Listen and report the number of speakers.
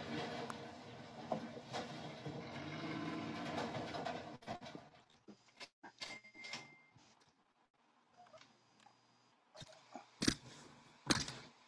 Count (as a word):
zero